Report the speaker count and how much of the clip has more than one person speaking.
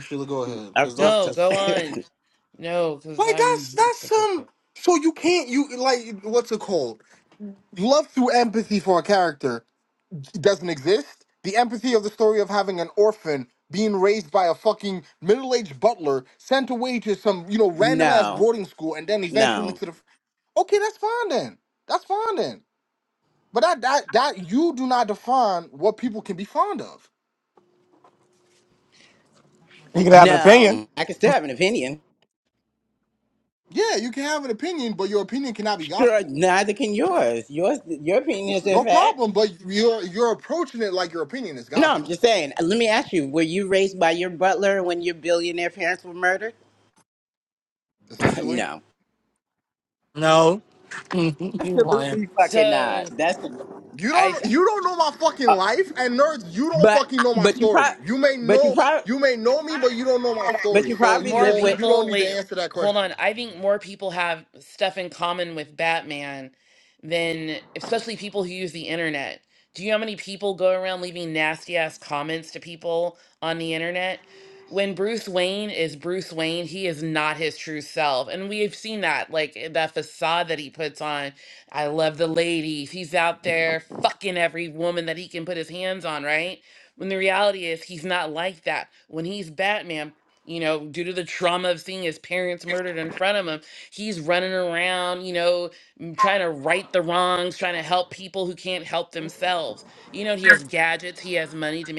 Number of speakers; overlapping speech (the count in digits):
4, about 10%